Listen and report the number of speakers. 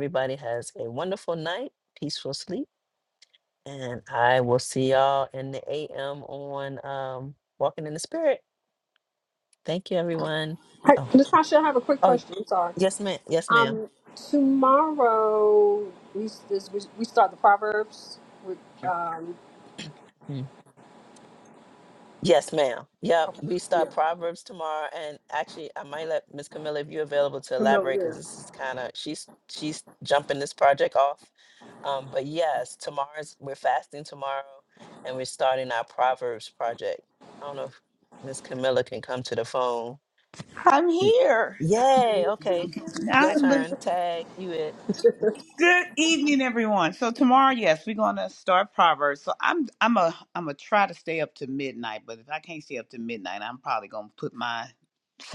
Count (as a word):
three